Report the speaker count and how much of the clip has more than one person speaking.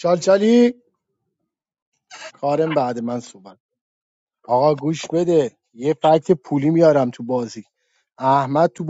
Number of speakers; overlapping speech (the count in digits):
1, no overlap